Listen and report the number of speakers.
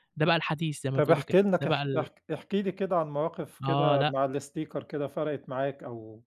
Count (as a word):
two